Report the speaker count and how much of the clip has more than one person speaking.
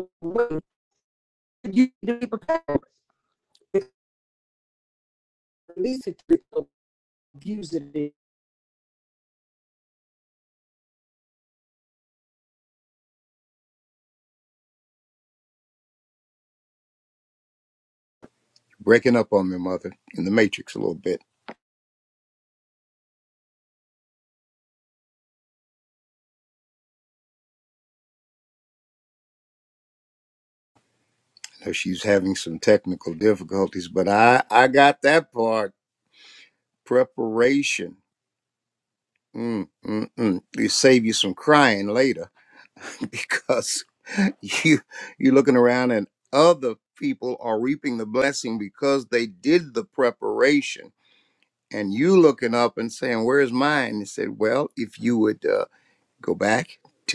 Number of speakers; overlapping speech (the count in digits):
2, no overlap